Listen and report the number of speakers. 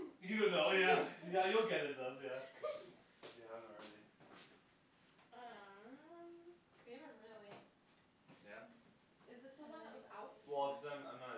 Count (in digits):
3